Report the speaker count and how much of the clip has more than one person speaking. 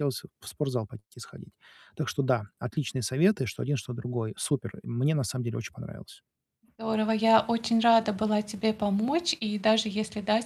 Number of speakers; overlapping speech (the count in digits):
2, no overlap